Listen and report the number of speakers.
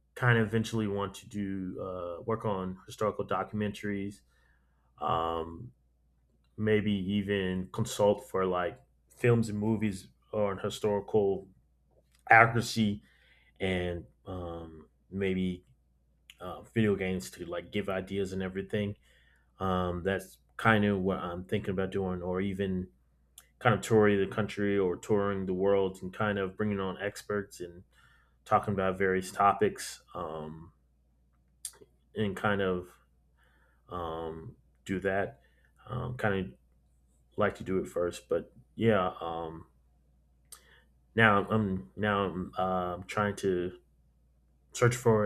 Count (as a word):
one